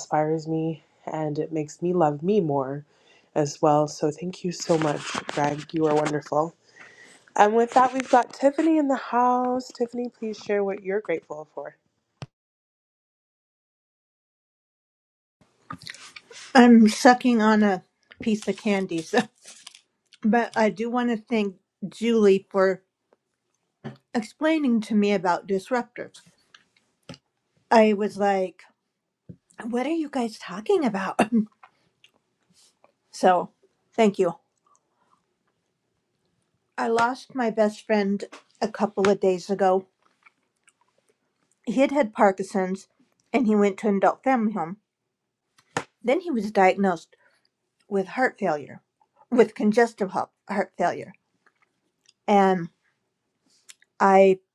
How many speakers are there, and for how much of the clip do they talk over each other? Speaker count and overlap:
2, no overlap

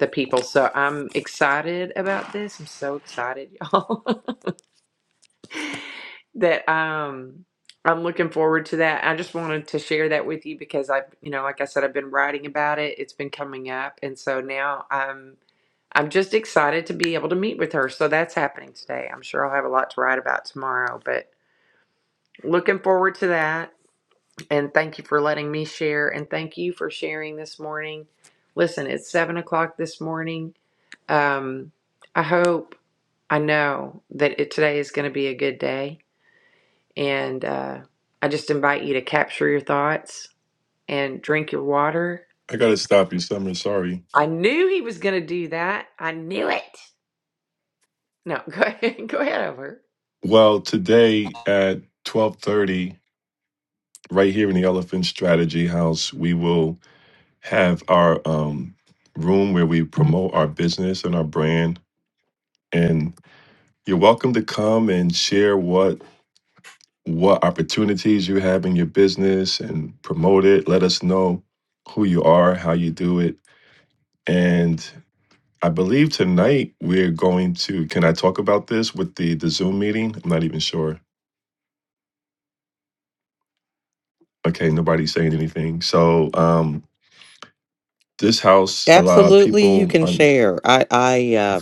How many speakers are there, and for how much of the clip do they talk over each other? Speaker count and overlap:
3, about 2%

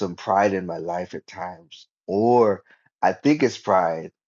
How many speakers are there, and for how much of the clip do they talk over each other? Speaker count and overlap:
1, no overlap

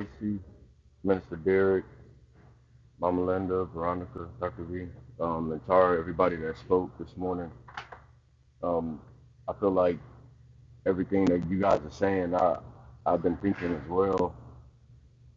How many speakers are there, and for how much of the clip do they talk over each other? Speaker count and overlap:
1, no overlap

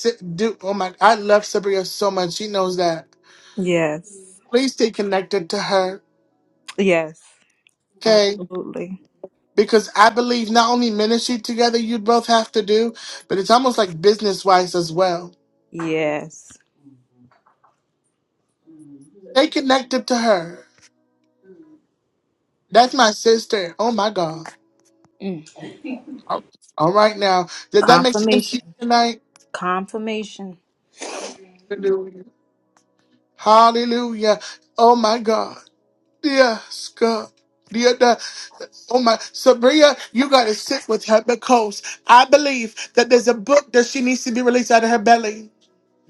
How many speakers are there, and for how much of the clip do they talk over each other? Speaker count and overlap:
2, about 3%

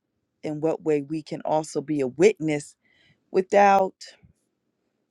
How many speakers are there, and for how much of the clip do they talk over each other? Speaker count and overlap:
1, no overlap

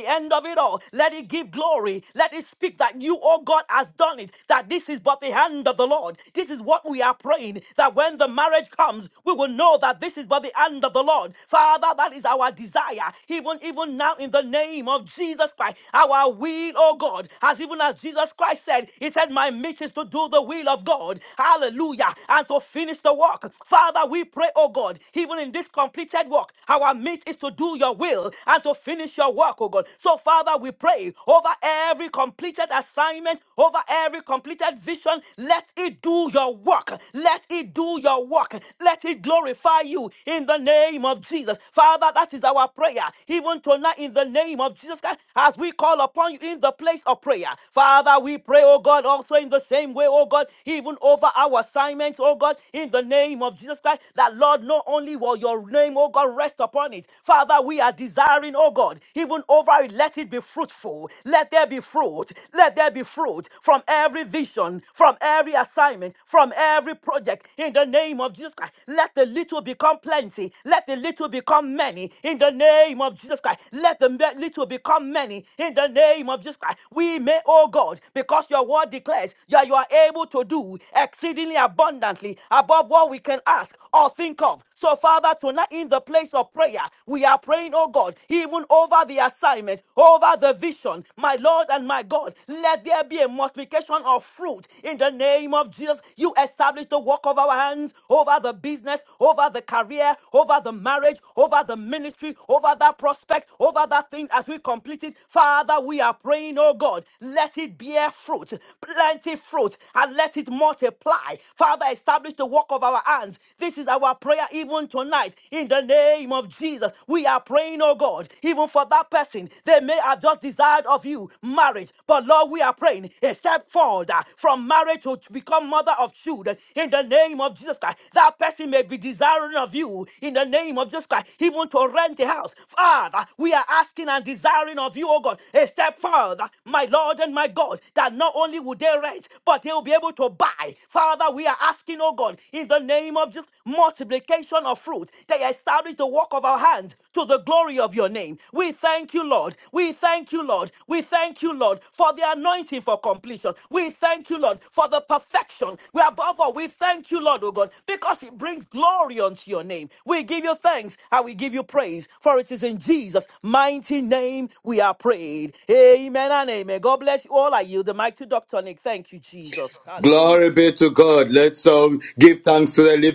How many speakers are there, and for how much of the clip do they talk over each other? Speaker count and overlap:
2, under 1%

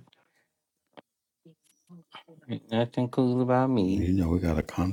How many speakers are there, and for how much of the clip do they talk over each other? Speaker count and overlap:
2, about 5%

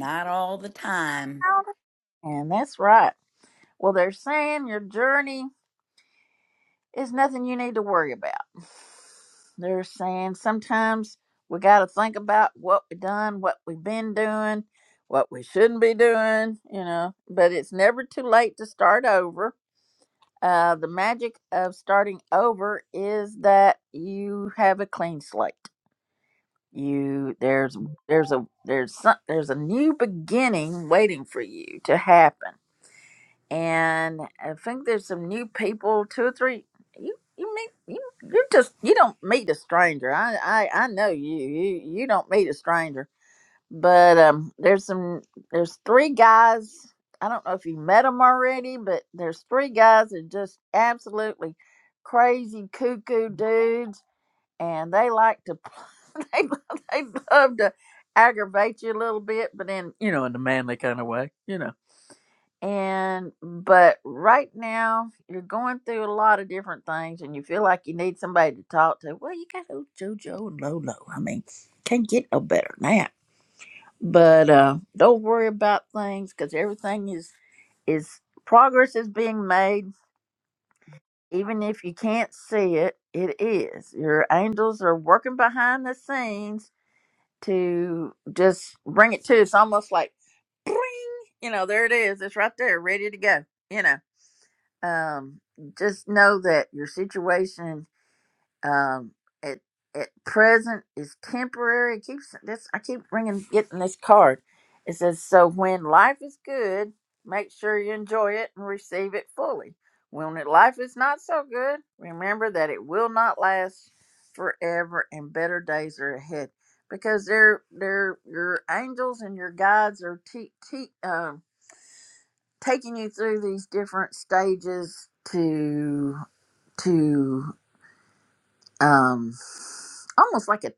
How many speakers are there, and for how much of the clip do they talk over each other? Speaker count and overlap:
2, no overlap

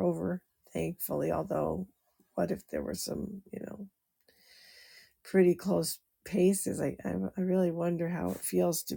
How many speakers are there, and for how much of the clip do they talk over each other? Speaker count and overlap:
1, no overlap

